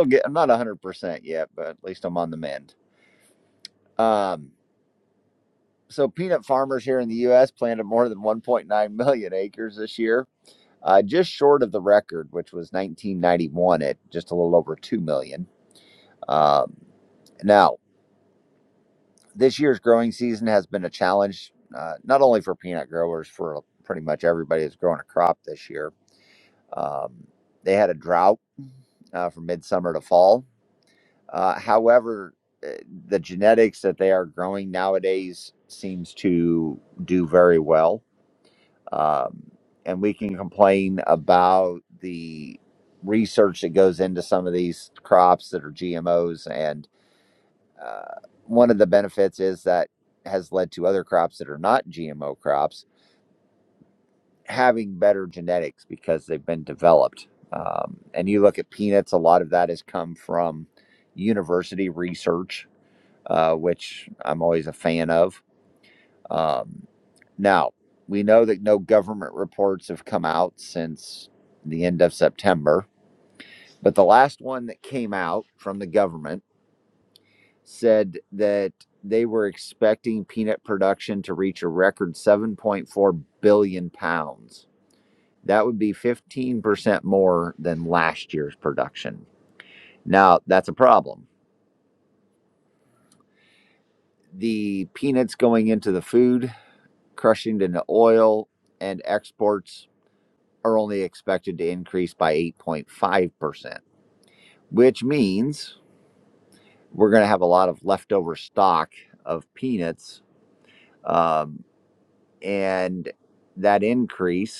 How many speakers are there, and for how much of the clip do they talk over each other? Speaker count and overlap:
1, no overlap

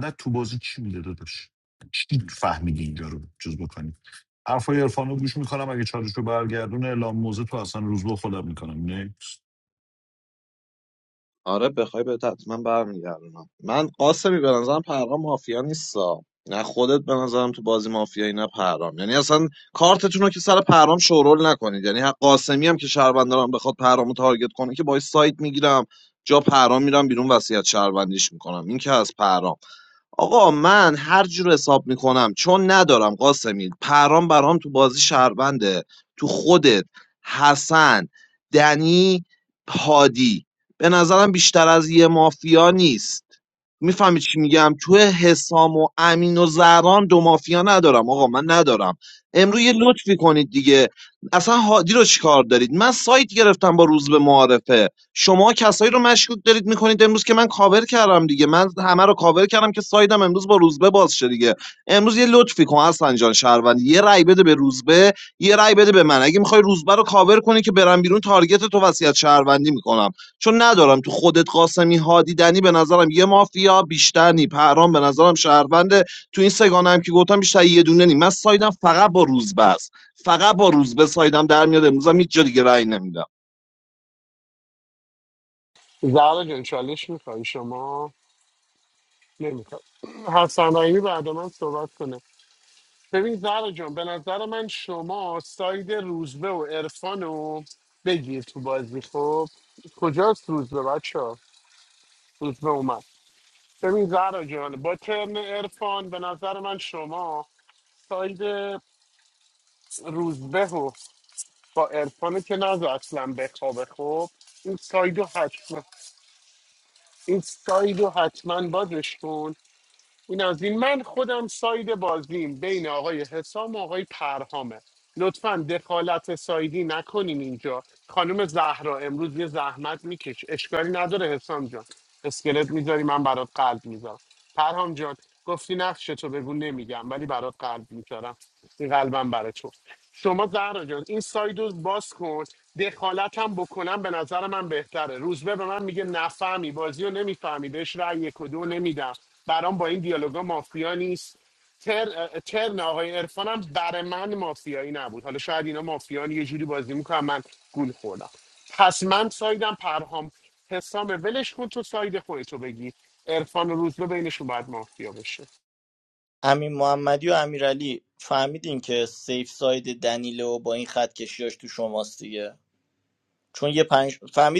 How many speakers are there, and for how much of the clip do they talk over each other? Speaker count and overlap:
4, no overlap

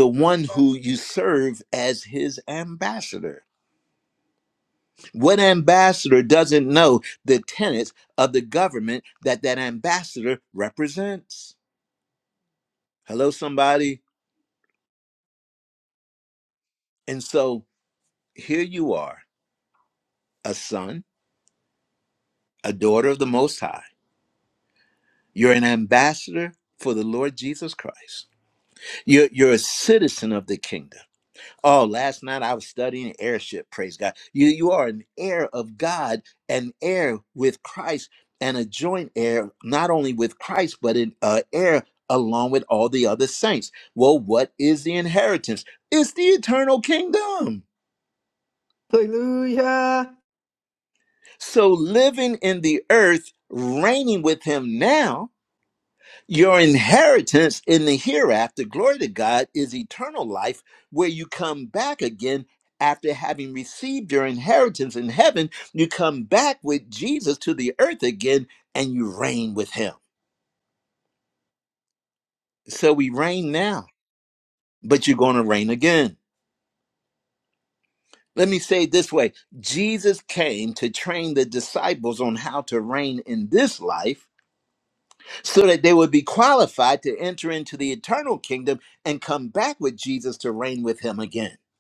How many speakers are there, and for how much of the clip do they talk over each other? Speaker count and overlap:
2, no overlap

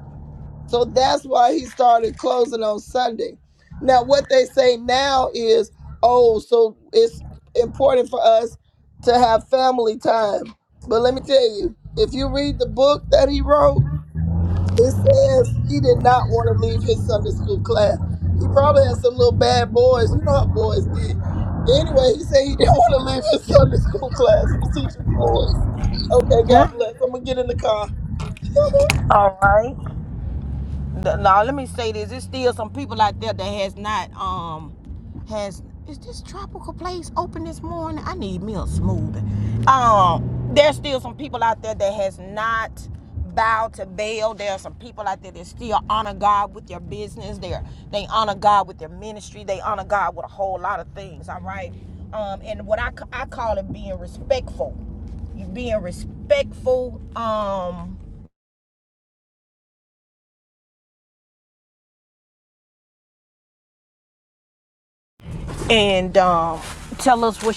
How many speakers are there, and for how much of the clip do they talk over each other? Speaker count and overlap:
2, under 1%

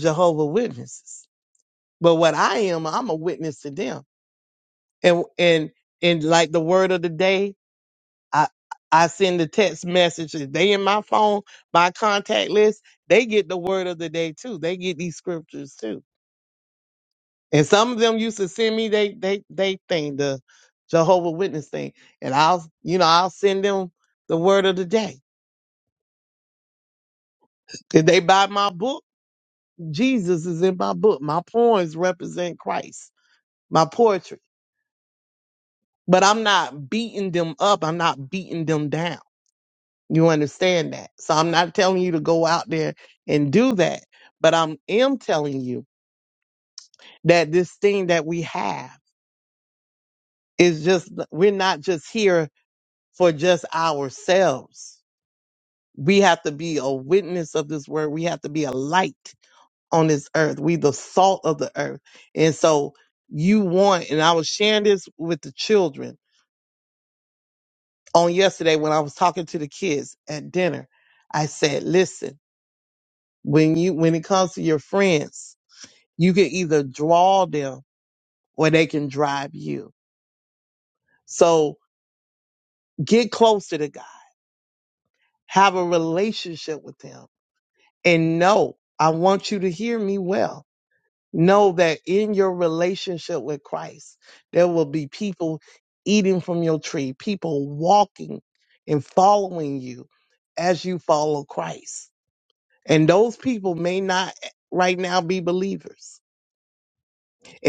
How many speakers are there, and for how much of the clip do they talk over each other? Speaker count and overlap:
1, no overlap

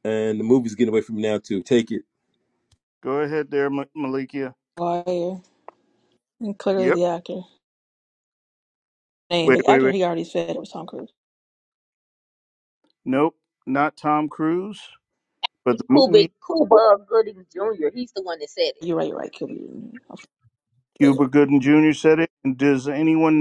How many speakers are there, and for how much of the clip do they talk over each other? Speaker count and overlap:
4, about 5%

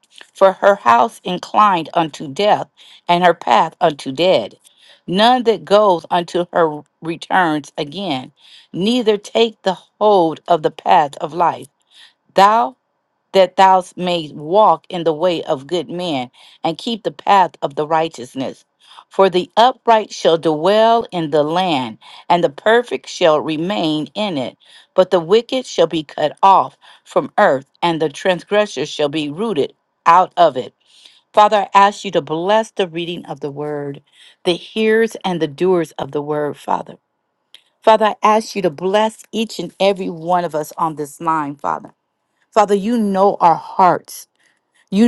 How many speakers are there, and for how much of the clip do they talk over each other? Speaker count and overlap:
1, no overlap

